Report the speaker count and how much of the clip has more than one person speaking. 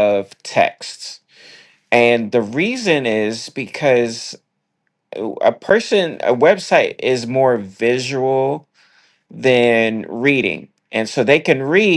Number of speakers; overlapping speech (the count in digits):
1, no overlap